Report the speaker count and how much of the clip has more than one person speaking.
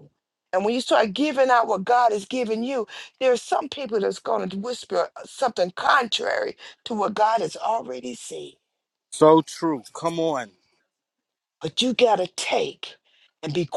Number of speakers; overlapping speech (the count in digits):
2, no overlap